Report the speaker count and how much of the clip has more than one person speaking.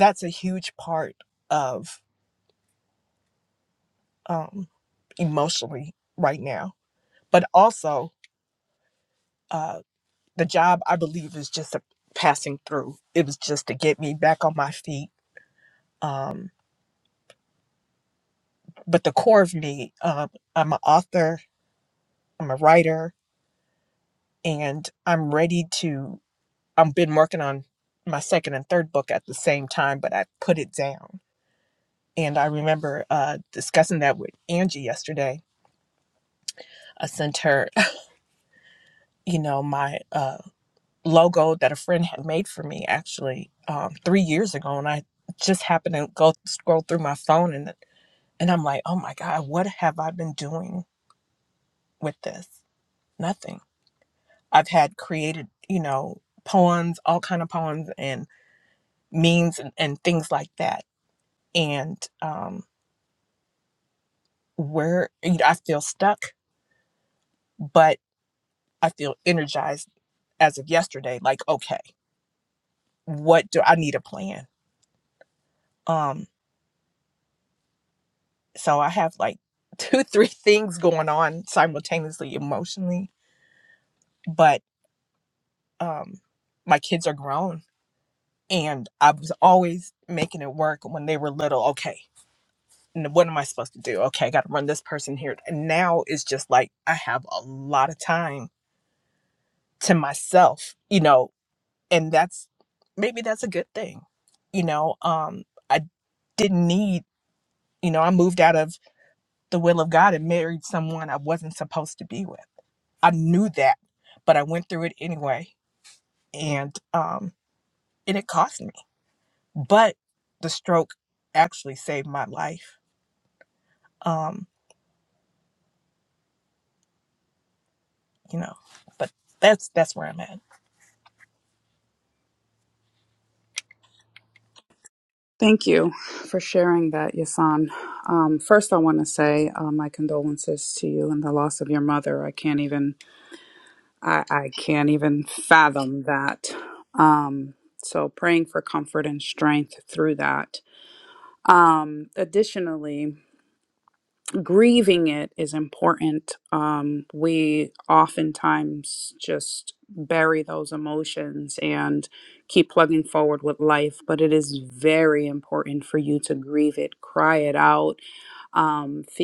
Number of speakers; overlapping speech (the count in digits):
2, no overlap